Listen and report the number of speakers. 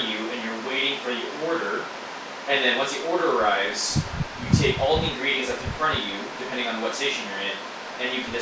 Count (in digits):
1